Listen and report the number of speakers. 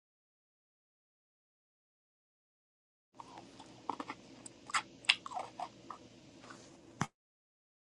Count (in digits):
0